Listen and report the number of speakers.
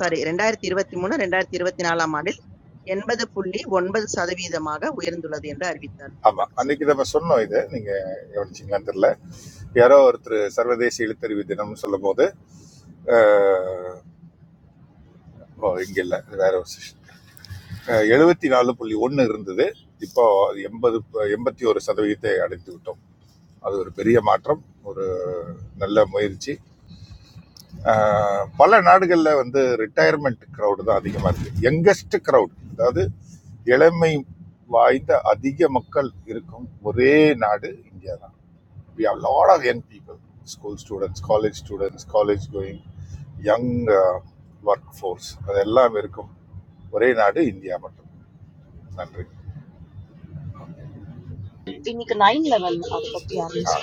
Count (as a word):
three